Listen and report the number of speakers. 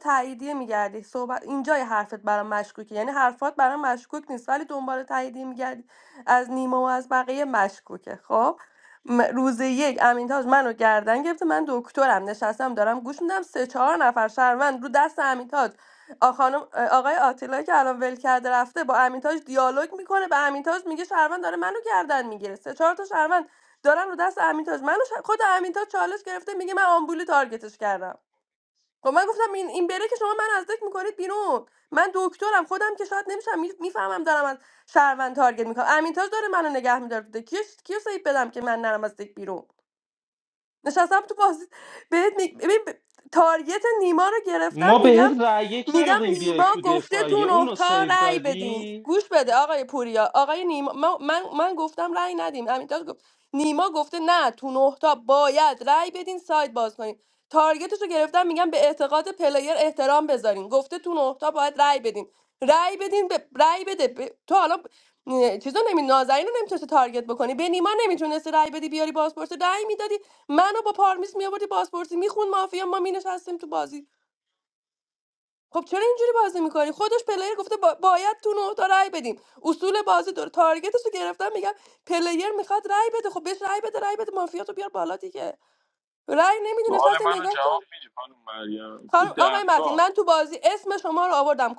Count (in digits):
3